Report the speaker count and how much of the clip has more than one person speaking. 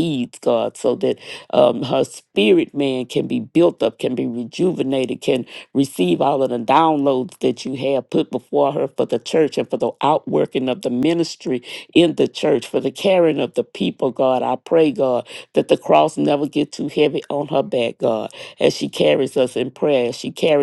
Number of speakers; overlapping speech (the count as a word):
one, no overlap